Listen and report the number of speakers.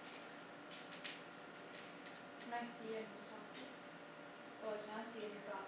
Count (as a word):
one